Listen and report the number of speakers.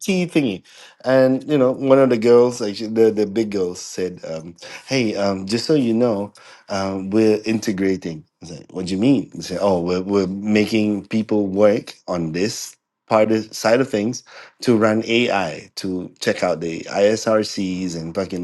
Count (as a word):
one